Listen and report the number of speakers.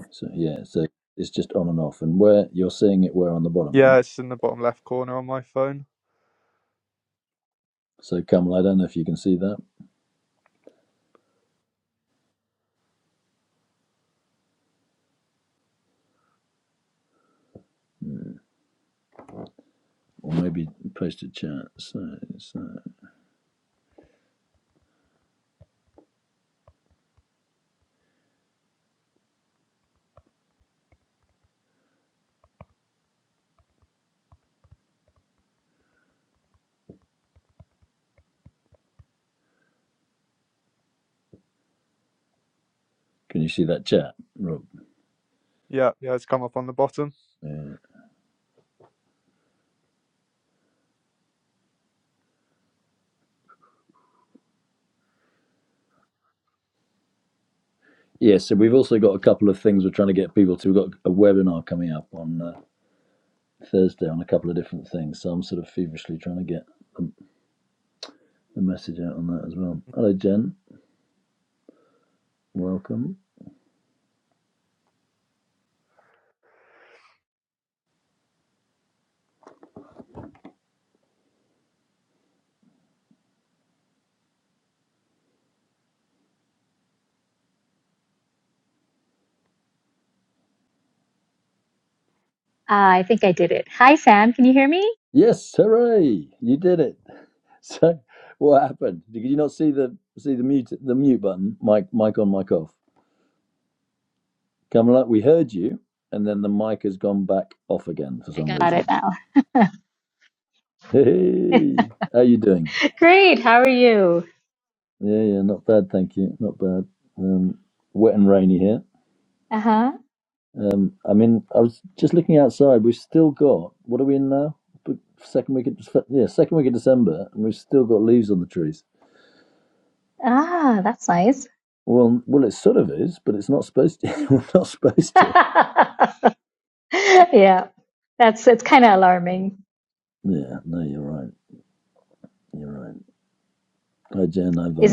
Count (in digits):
3